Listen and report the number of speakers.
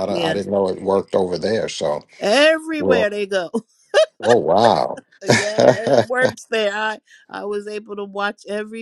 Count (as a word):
two